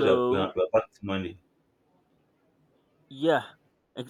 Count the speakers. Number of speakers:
two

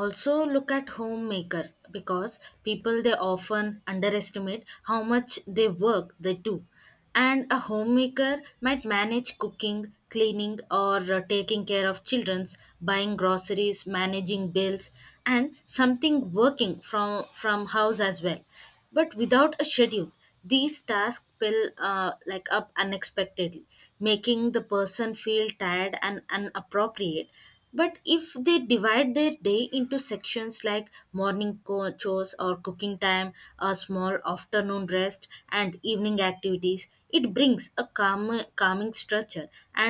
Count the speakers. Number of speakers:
one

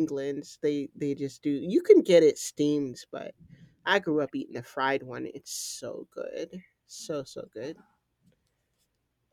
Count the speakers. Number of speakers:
one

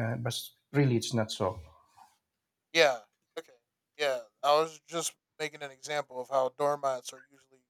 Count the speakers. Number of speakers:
two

